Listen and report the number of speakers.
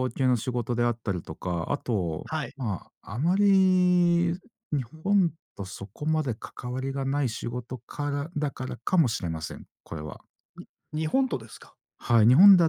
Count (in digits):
2